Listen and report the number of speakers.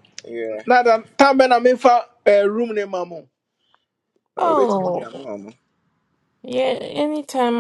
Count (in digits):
3